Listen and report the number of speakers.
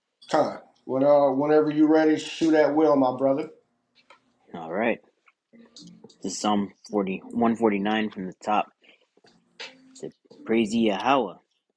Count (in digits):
2